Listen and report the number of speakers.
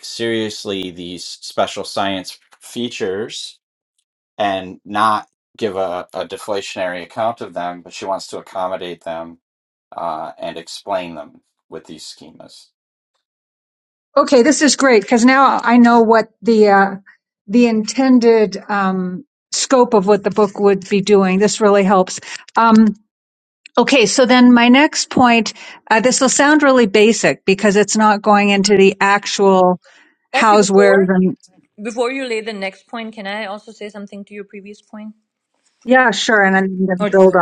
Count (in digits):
3